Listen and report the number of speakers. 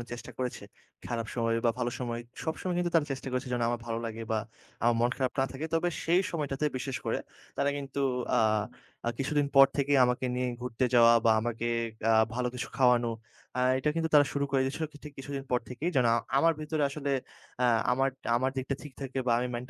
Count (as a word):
one